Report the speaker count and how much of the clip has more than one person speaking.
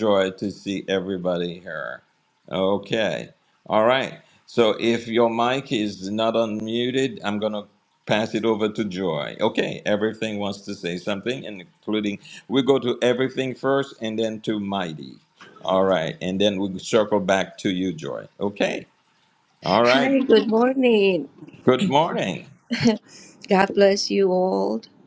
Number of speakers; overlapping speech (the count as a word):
two, about 1%